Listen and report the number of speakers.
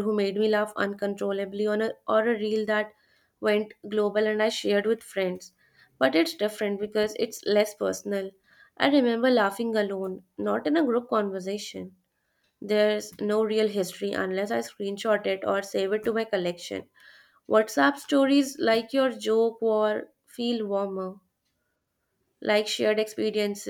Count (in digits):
1